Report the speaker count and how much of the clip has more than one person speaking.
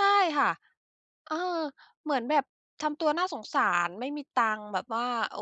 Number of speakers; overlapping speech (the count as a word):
one, no overlap